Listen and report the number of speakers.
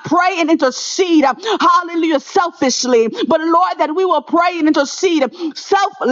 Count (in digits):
1